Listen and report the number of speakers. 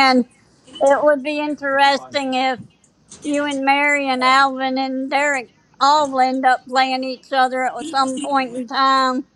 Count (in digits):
1